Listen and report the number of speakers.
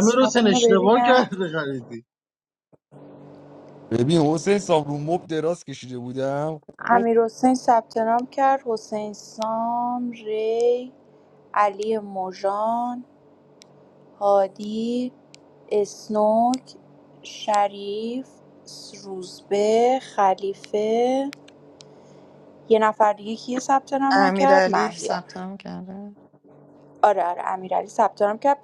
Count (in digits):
4